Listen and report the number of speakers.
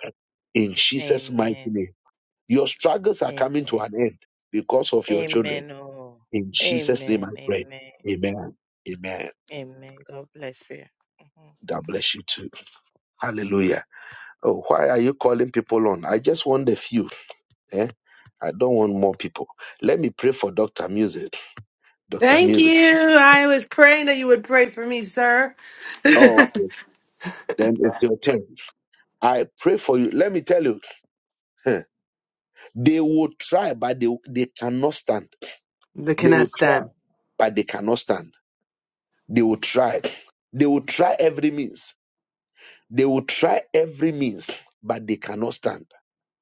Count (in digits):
3